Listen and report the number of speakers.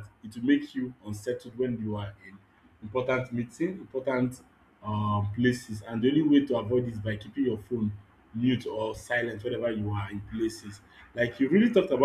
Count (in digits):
1